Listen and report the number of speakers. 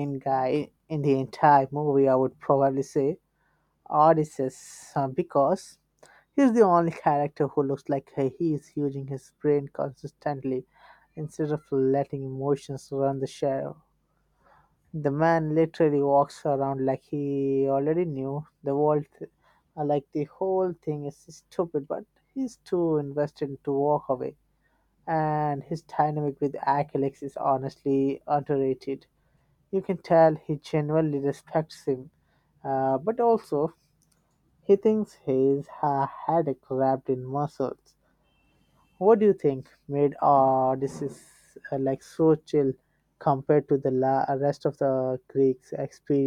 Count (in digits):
1